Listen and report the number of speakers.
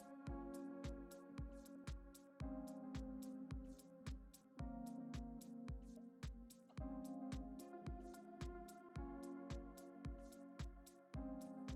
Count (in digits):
0